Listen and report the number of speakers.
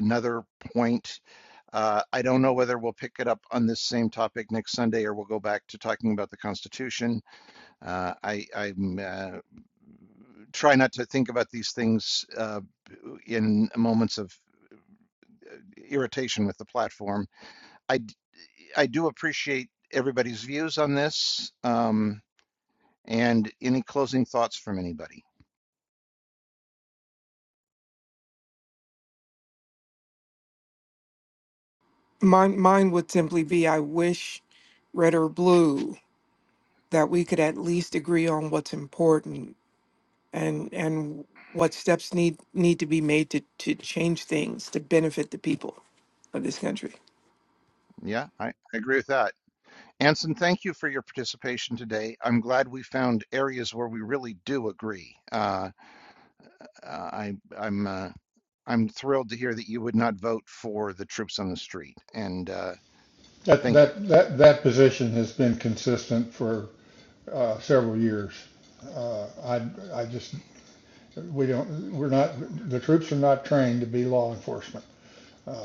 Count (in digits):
3